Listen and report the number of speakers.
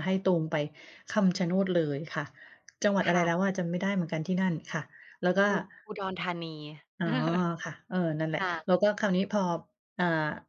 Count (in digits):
2